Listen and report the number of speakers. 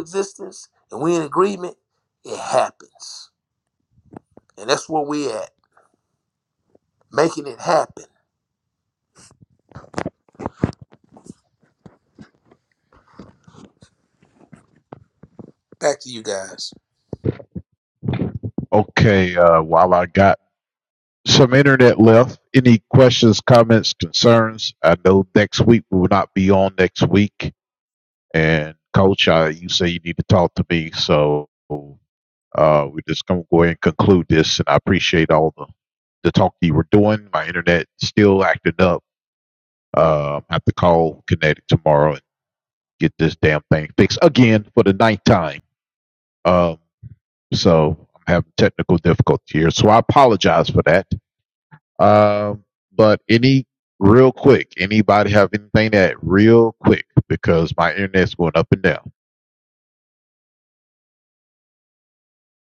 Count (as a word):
two